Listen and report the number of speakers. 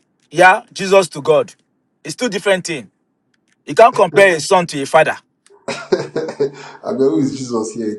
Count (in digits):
2